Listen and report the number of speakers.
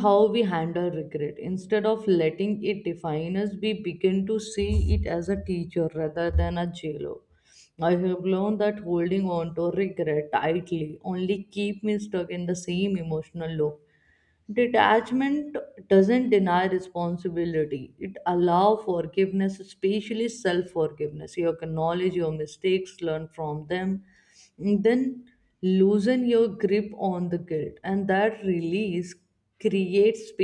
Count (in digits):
1